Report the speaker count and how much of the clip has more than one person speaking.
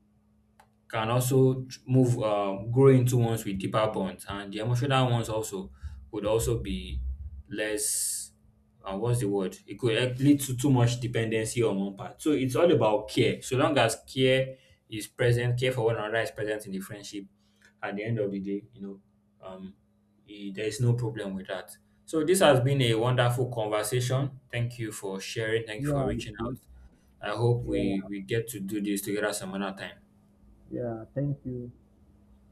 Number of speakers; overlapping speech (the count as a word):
two, about 3%